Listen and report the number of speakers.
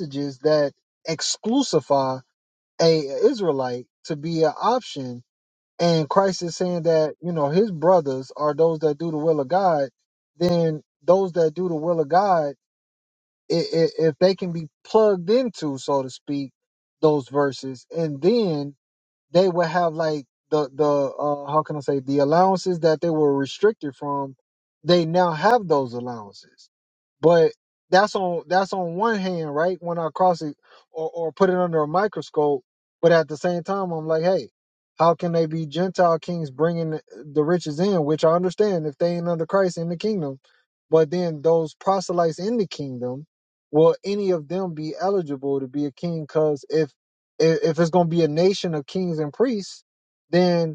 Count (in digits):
1